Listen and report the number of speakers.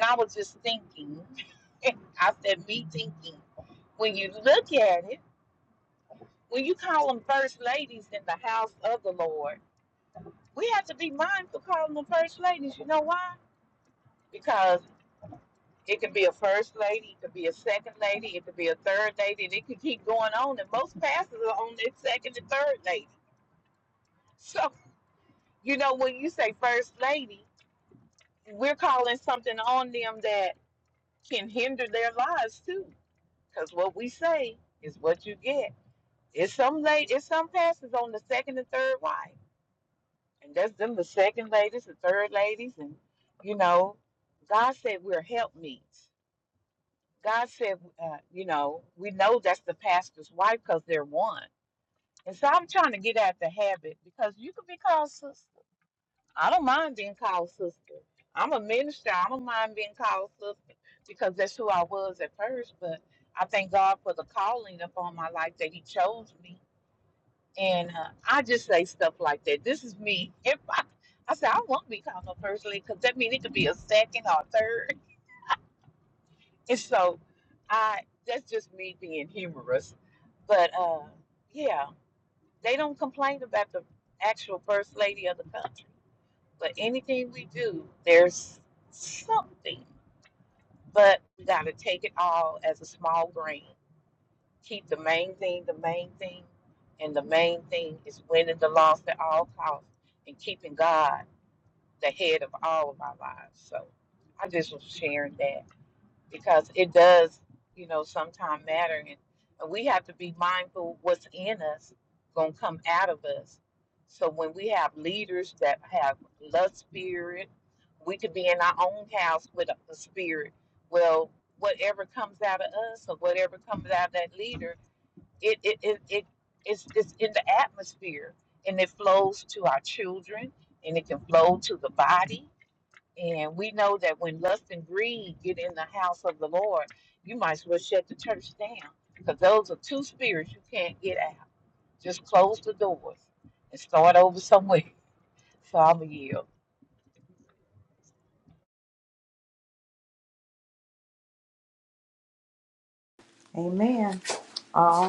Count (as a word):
two